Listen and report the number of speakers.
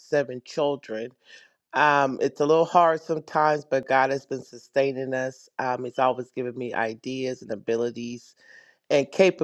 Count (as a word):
one